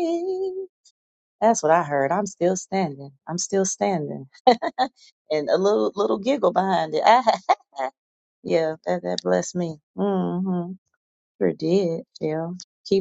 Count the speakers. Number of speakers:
1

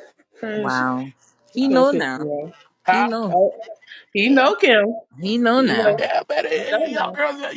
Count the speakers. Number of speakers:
3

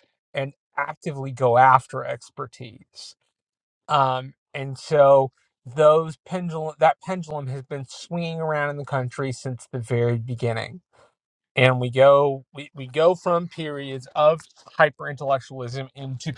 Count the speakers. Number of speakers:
1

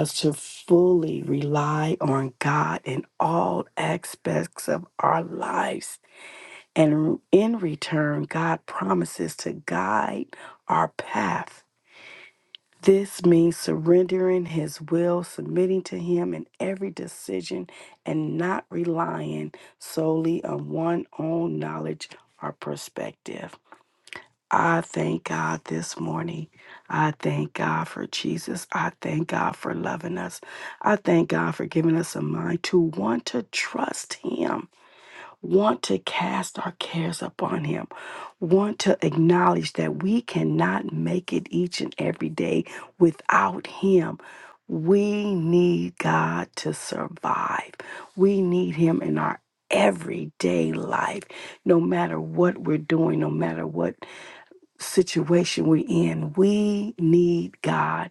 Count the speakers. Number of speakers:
1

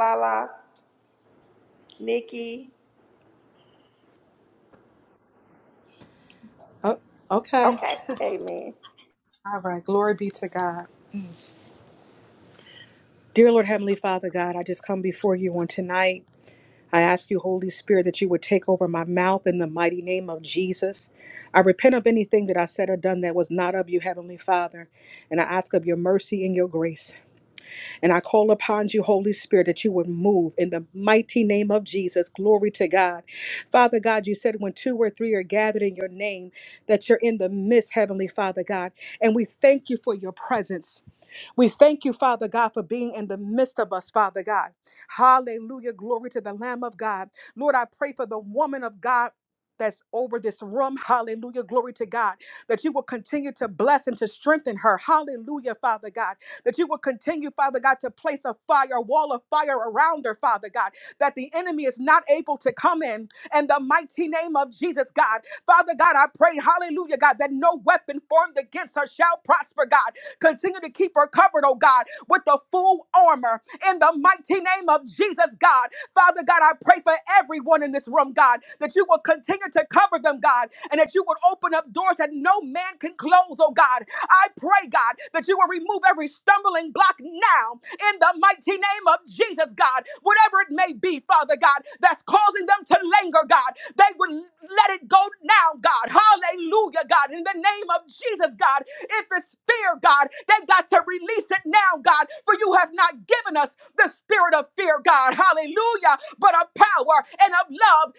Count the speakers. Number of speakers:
2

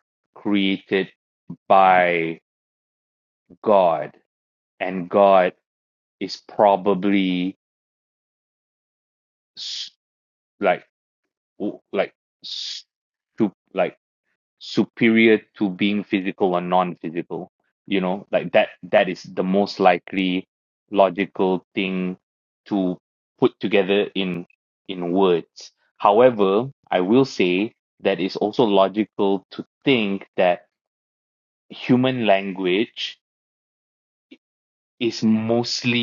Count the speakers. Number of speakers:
1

